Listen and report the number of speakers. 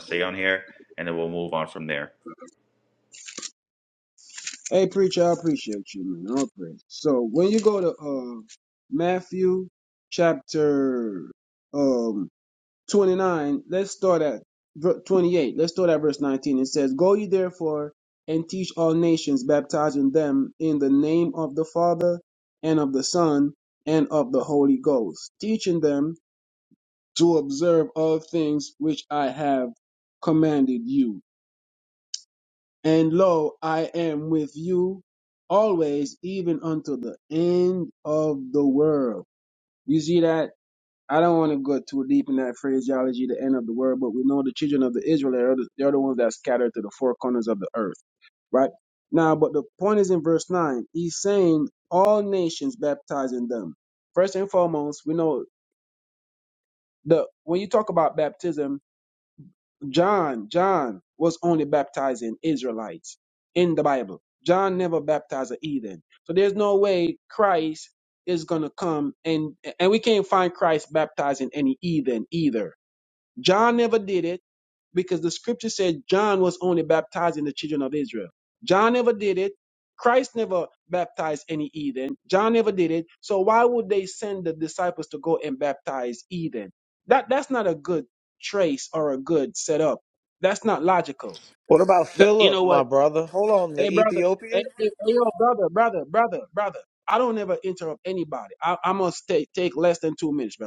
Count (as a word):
three